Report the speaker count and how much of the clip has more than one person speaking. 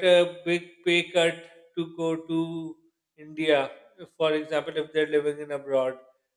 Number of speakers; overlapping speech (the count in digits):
1, no overlap